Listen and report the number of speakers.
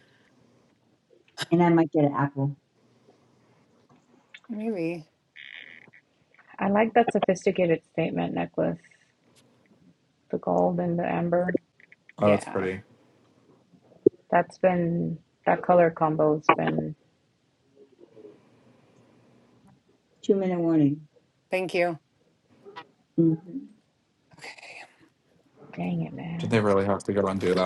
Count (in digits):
4